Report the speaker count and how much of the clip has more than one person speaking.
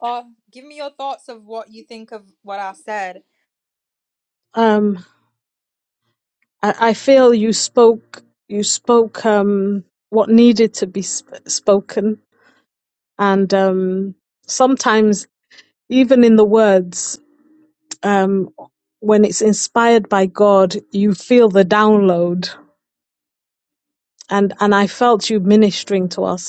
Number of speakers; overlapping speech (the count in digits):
2, no overlap